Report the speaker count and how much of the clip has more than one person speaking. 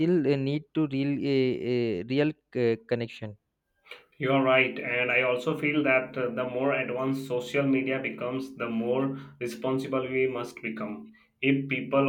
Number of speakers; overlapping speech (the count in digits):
2, no overlap